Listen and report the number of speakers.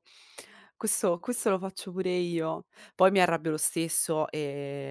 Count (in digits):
1